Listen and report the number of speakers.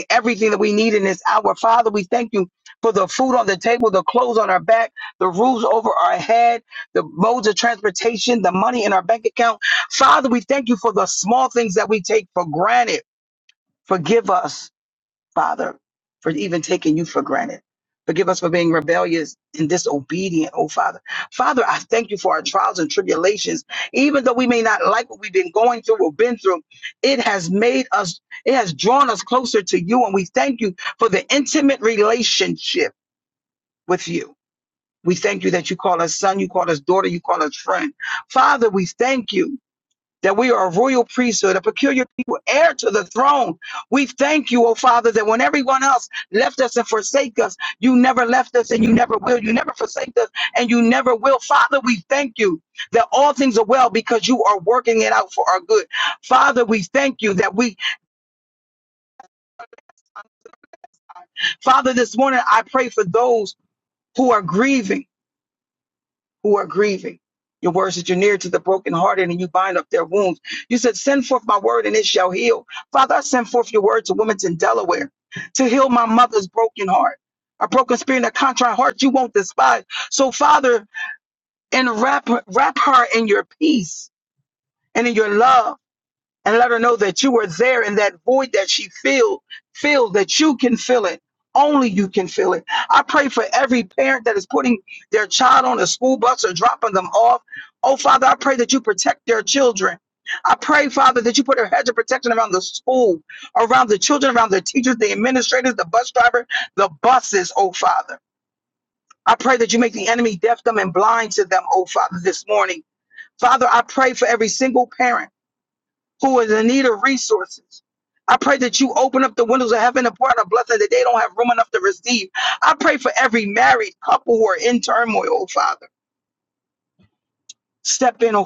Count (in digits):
1